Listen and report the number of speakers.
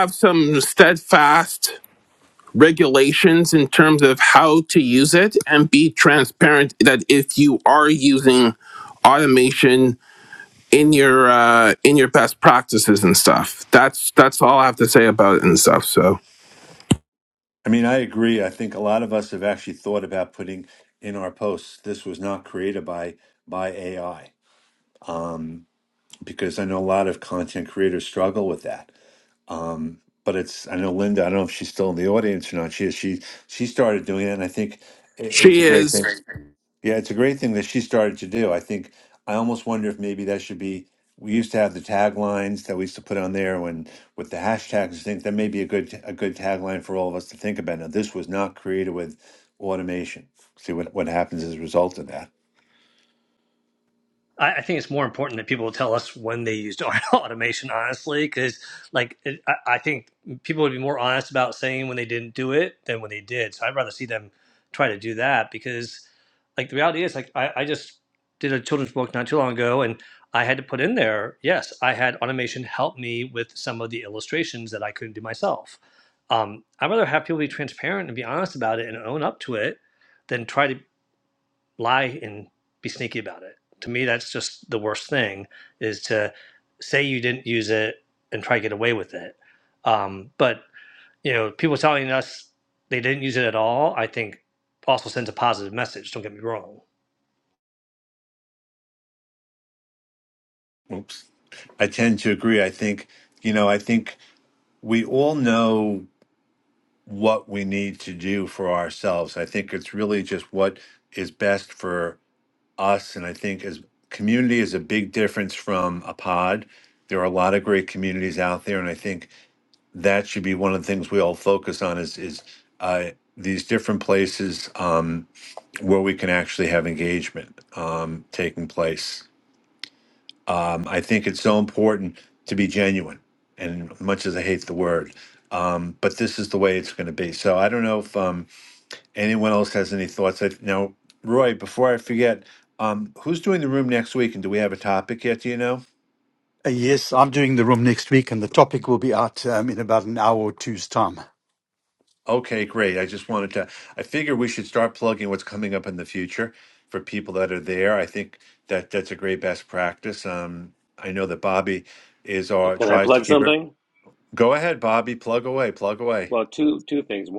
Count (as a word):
five